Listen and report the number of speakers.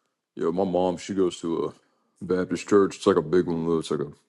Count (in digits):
1